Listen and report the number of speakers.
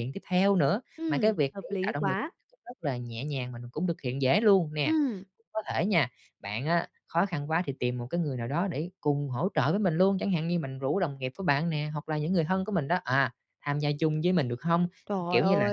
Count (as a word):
two